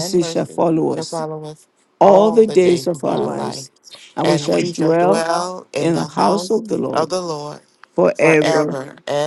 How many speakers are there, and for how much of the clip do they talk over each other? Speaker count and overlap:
two, about 52%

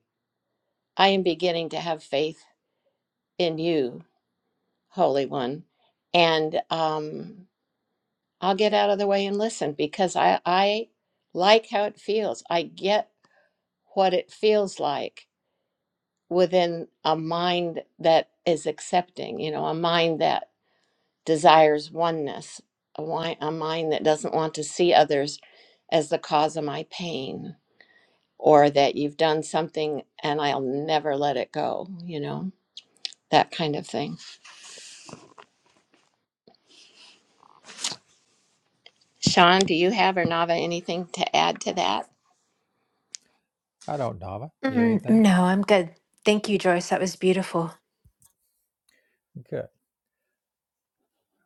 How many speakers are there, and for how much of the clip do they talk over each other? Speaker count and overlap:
three, about 1%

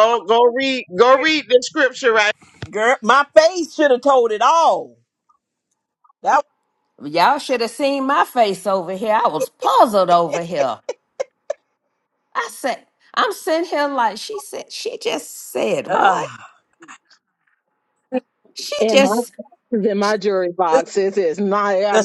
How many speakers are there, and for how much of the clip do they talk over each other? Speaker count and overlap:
four, about 4%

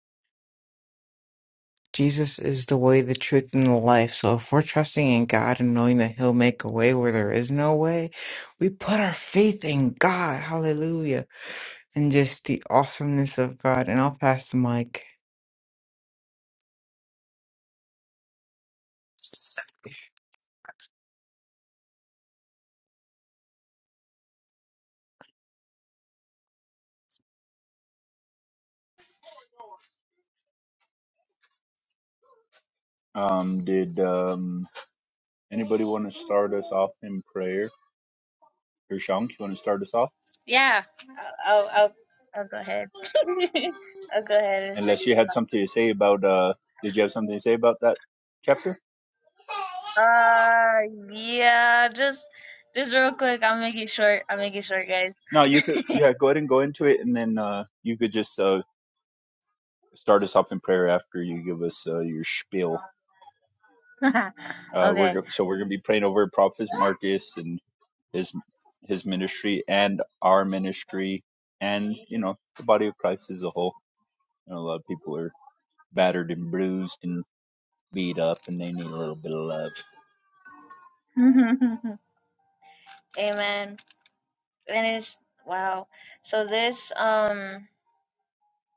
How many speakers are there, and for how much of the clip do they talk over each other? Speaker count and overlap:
three, about 1%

